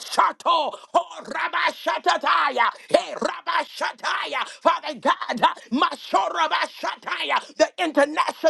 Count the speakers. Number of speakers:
one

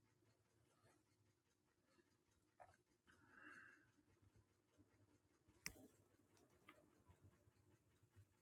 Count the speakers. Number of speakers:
zero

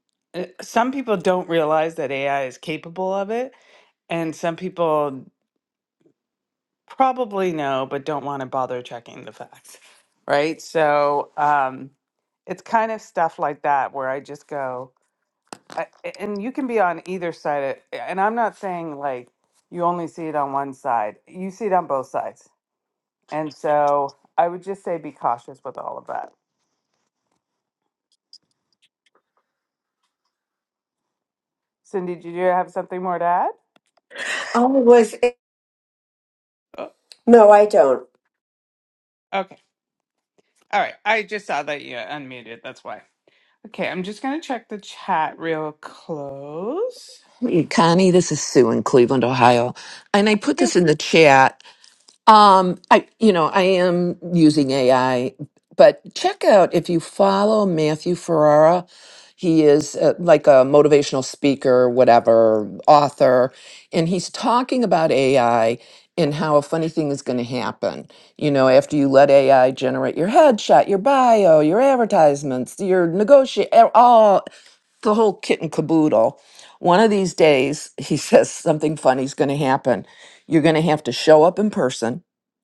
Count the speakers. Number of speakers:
three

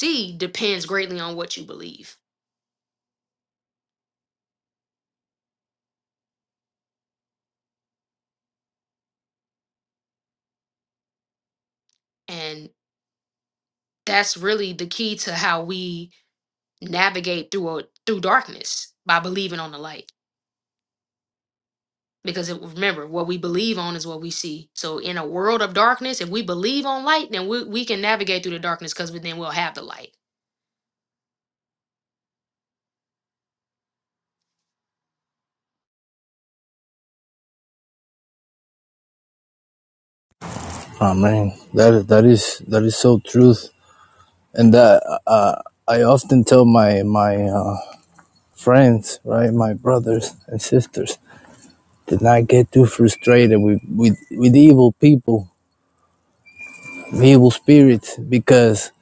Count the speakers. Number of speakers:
two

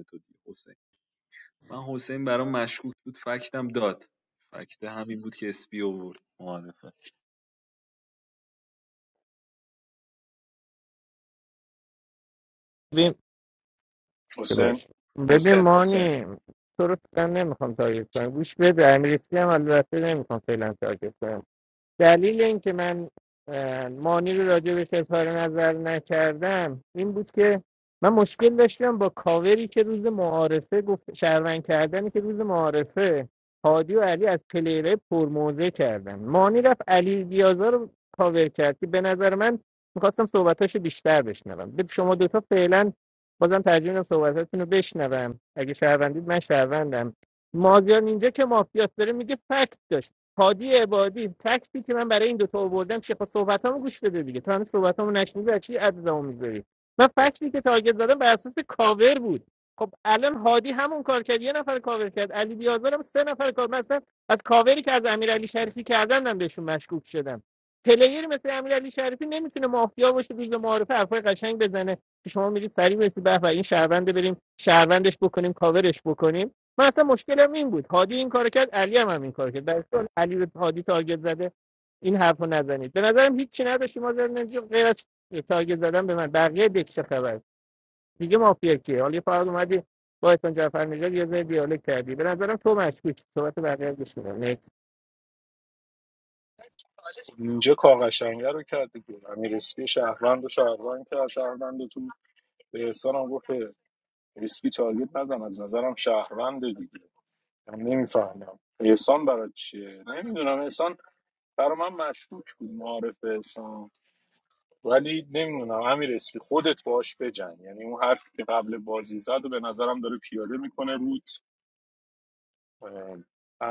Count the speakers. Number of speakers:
three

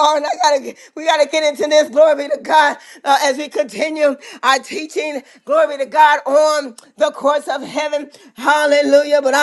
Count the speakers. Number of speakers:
one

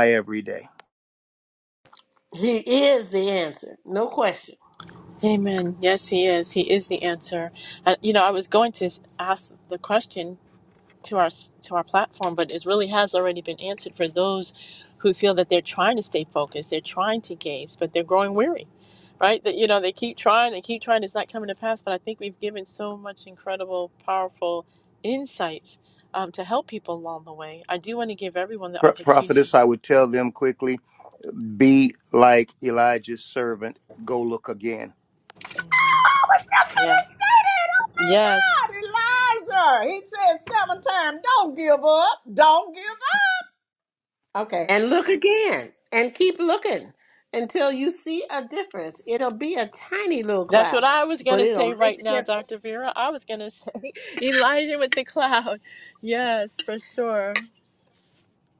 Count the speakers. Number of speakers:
four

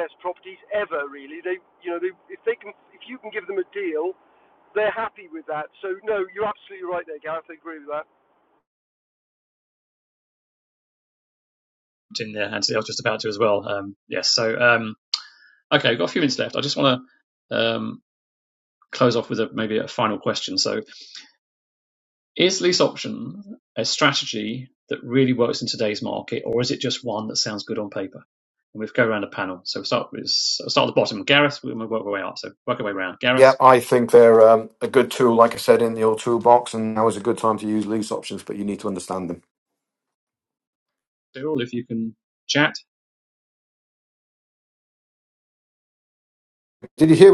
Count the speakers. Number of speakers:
three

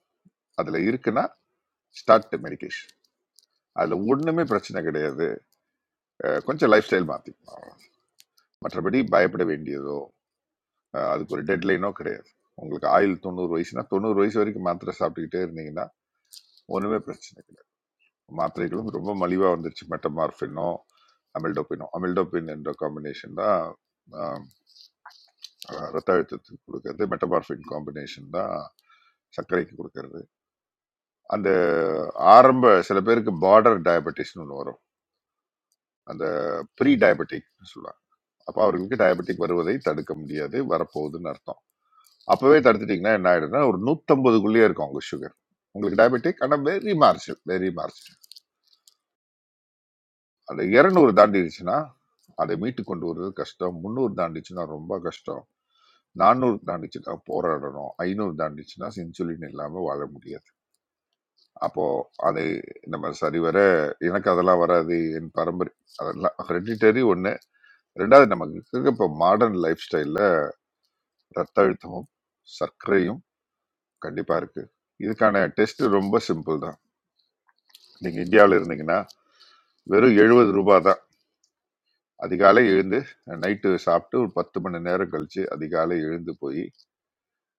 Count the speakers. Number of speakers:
one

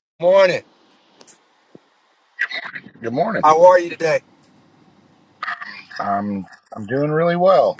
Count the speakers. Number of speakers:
two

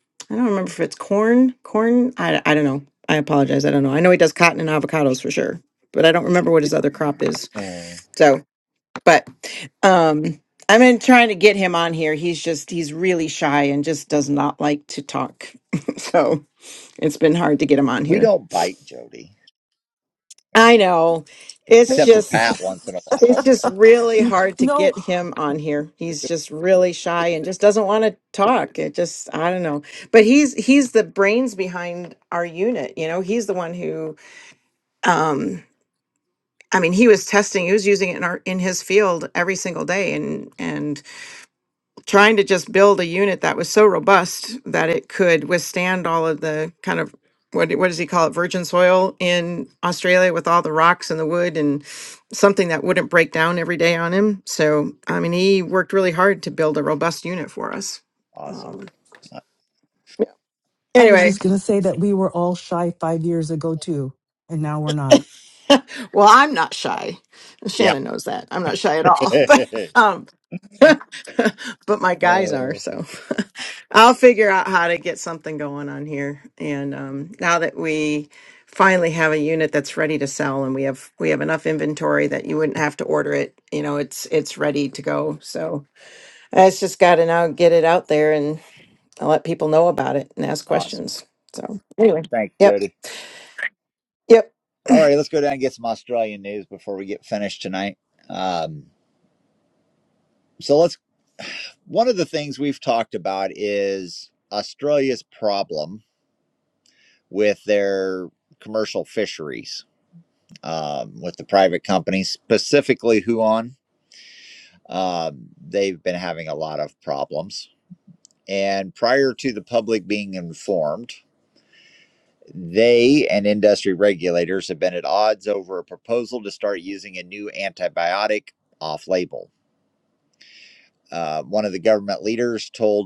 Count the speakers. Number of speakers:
three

